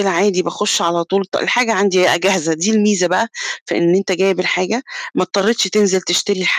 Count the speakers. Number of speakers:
1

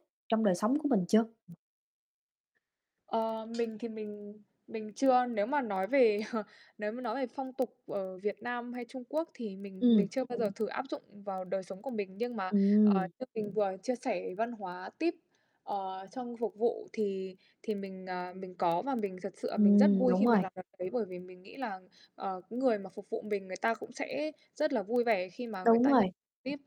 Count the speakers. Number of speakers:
2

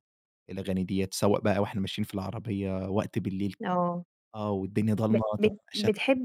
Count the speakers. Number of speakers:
2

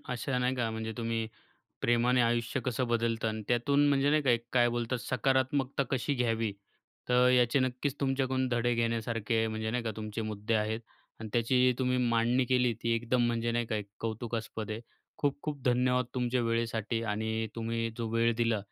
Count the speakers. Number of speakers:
1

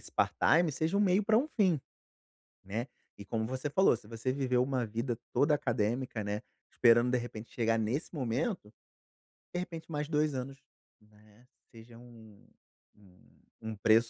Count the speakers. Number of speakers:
1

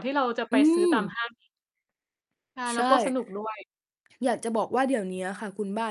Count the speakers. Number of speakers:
2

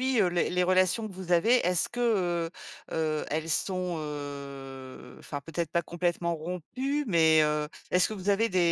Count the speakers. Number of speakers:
1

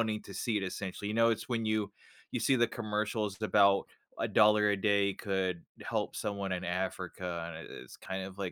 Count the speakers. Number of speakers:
1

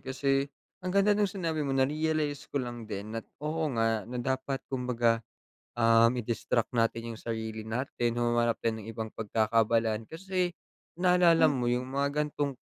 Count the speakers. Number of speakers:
1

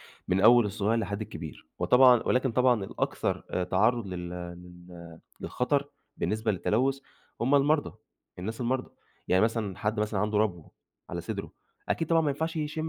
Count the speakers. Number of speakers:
1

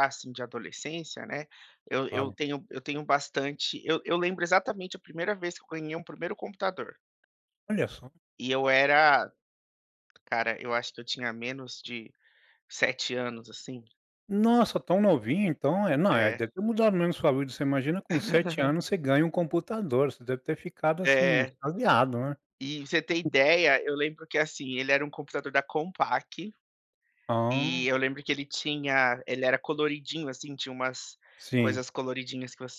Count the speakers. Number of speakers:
2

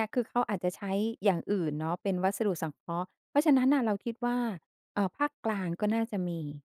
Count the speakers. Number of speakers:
1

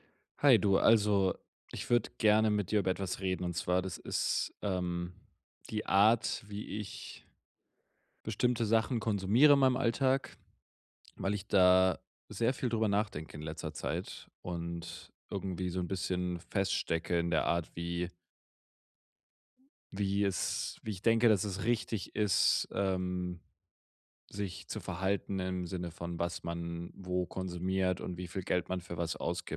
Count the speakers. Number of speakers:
1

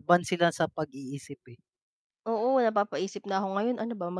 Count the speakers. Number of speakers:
2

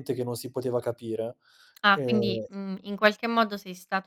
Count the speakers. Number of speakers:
2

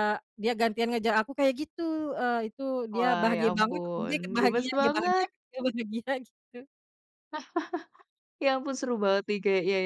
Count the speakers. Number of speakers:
2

